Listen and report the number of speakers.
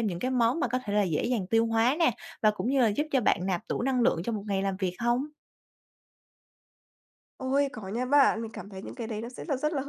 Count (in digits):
2